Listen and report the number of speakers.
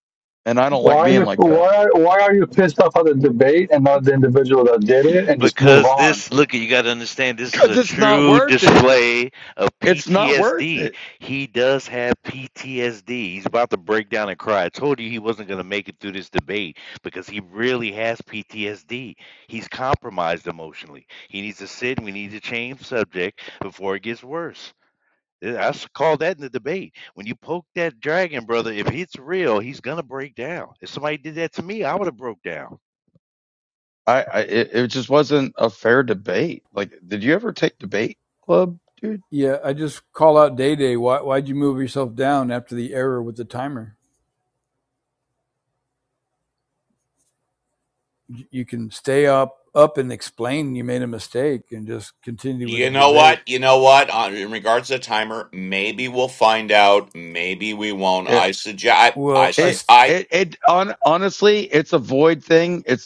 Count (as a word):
five